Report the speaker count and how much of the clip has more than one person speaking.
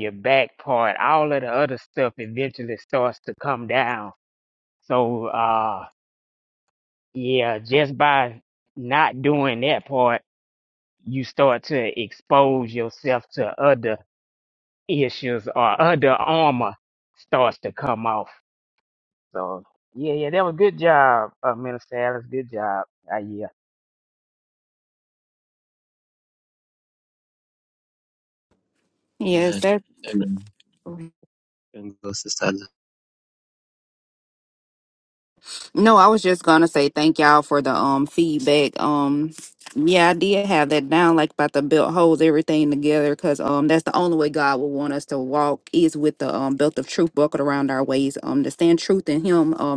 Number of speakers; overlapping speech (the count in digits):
3, about 1%